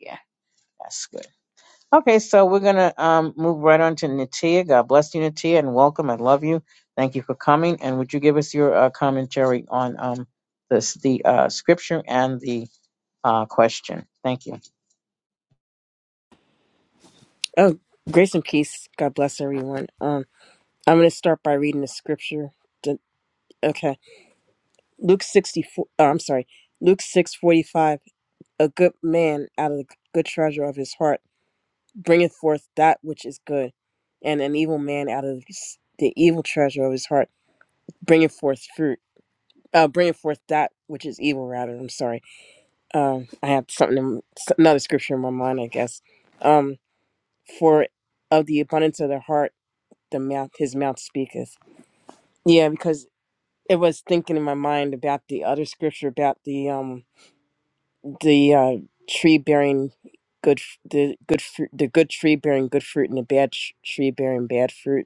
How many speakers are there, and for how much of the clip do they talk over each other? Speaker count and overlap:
2, no overlap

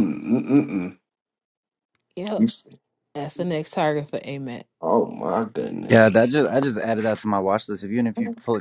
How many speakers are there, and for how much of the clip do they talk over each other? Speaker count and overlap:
3, about 3%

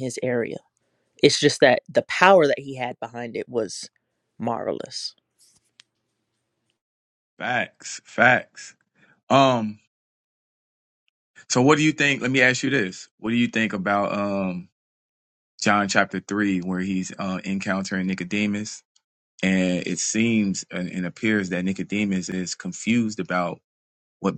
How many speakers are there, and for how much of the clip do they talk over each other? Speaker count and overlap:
2, no overlap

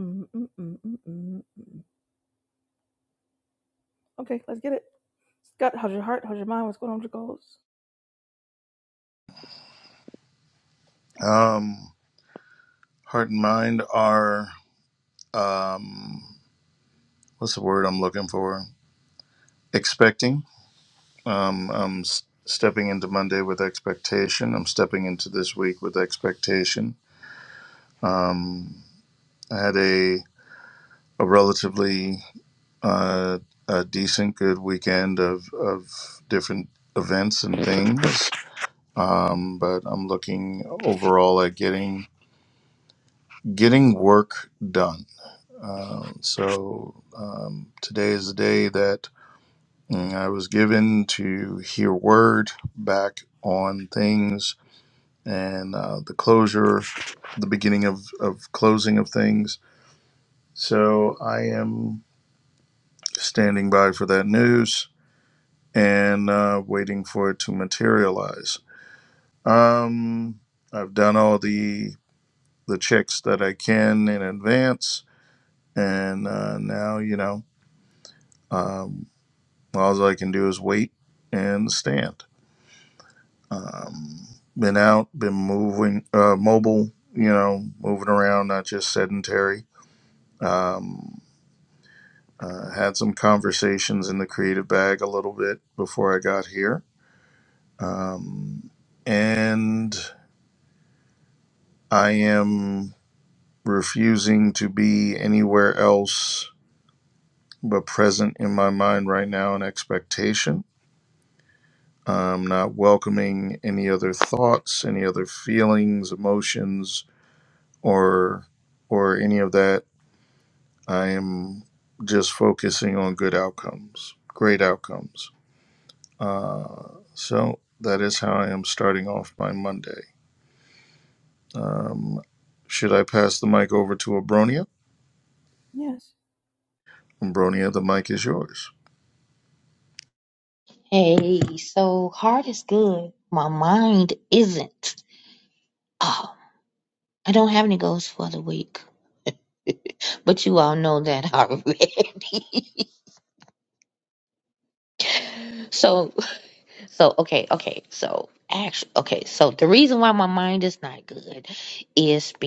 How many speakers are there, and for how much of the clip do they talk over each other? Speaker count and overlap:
3, no overlap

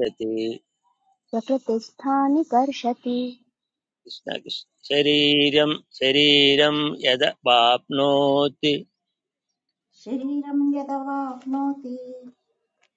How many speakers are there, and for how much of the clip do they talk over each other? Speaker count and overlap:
3, no overlap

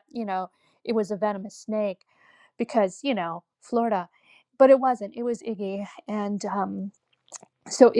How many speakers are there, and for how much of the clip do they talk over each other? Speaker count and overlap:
1, no overlap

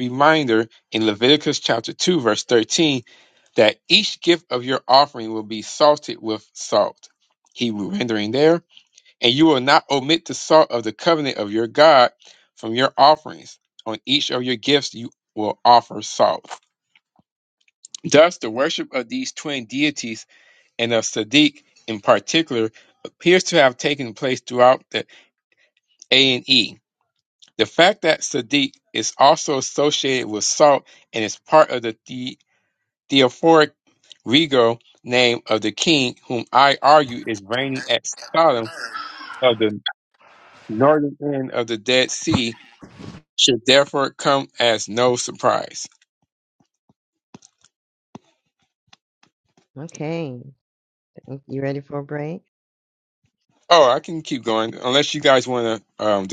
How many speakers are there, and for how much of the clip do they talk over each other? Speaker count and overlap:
2, no overlap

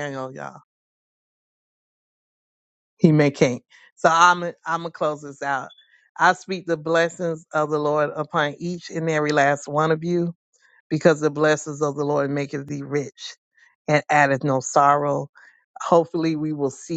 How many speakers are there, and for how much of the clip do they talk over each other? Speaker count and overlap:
1, no overlap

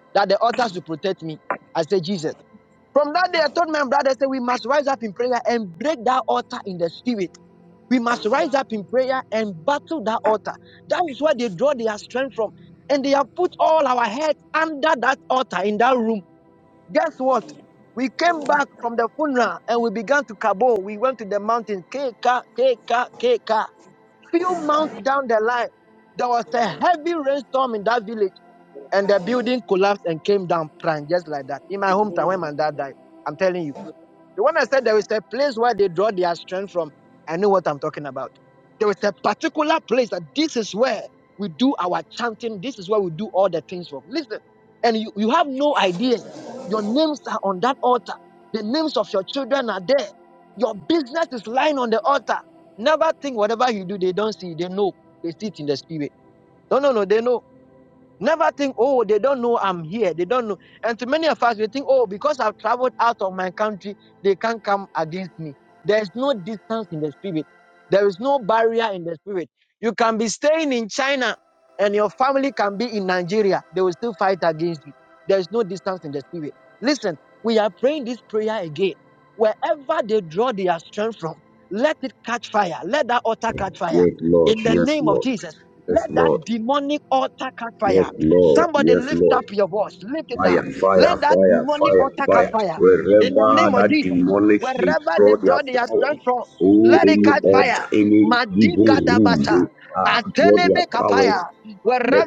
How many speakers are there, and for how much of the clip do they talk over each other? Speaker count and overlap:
2, about 11%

